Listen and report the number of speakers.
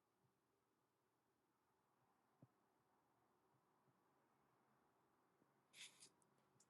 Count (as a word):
zero